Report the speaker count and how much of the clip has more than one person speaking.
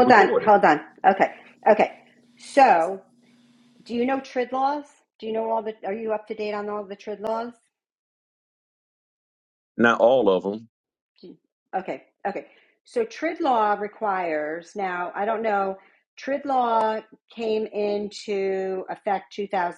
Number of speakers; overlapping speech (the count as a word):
two, about 3%